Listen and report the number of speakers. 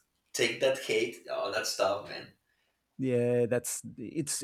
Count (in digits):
2